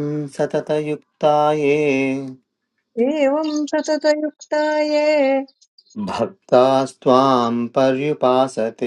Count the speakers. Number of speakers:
two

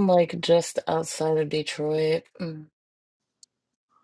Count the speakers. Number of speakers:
one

